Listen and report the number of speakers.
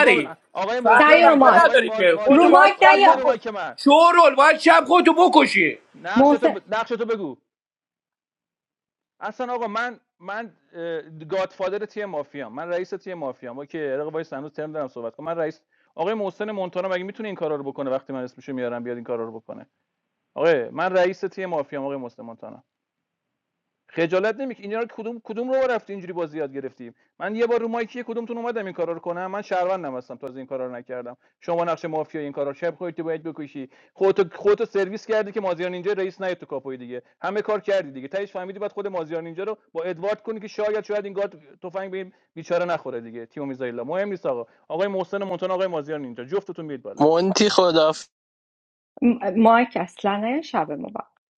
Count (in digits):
4